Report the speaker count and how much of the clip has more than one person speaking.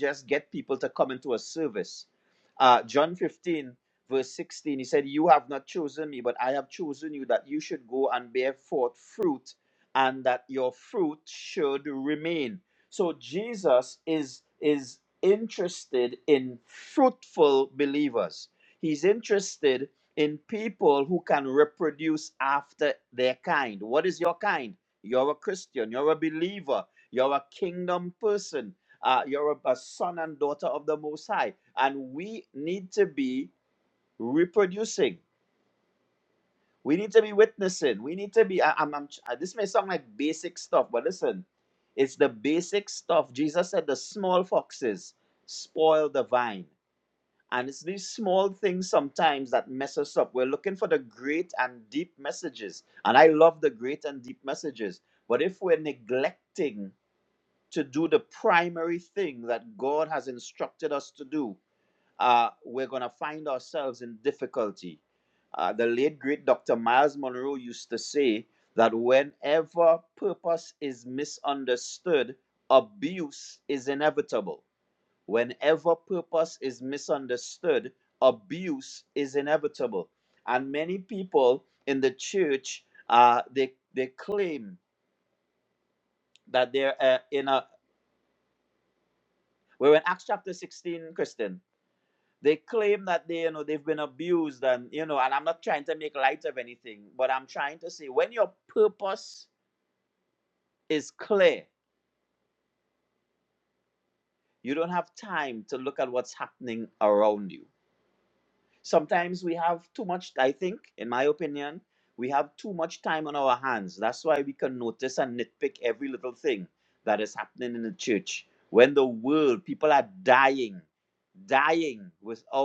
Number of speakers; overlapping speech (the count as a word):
one, no overlap